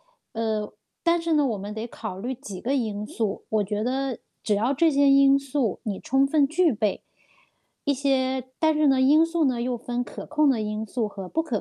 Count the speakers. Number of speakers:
one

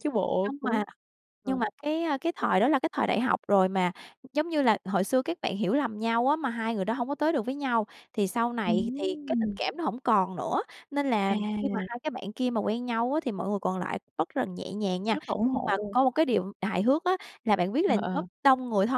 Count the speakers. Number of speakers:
two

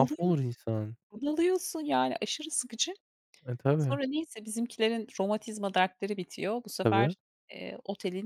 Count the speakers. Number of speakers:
two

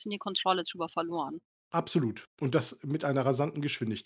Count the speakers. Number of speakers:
two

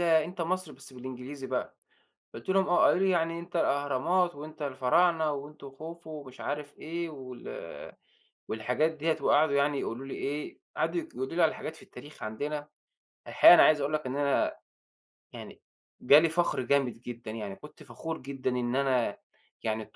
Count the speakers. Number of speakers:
one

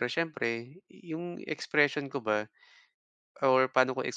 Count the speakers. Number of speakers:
one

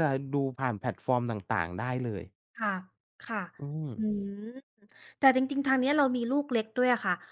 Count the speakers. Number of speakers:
two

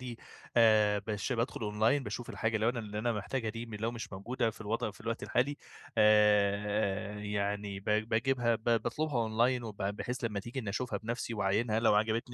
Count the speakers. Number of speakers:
one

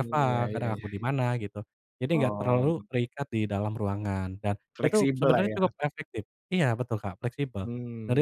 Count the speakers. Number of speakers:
two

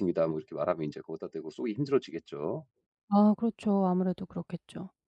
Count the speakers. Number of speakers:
two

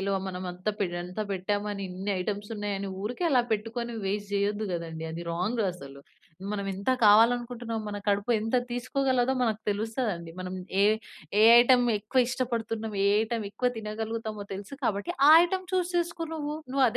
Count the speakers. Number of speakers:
one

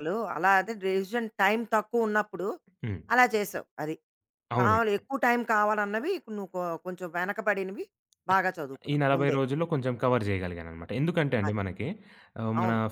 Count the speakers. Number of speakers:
two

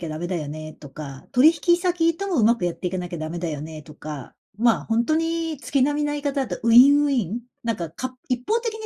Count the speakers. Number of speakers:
one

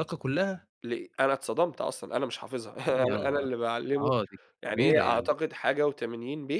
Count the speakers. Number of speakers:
two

